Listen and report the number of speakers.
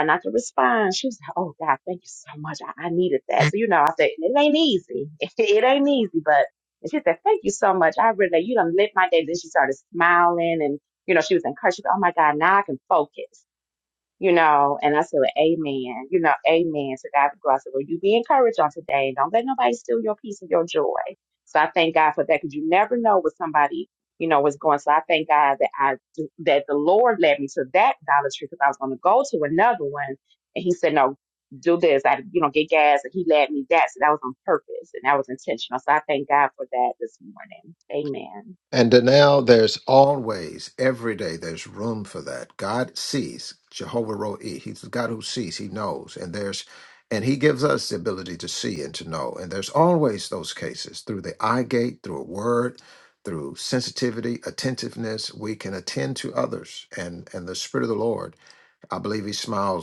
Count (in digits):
2